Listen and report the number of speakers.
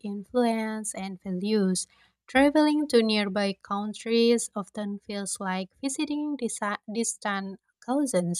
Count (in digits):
1